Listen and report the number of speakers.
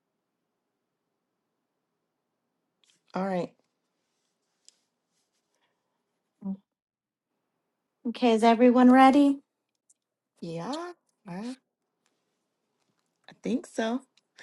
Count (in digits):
2